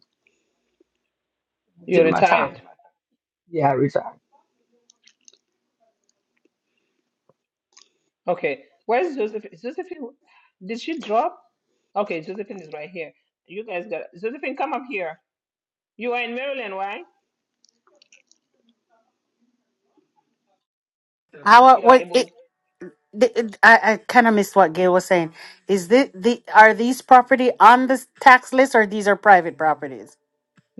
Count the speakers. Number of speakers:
three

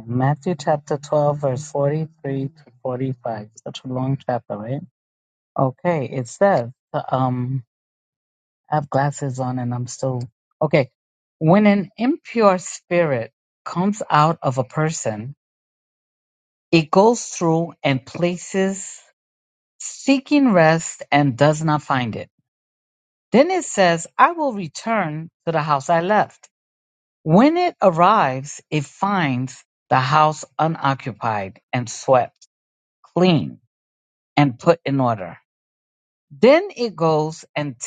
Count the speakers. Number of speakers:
one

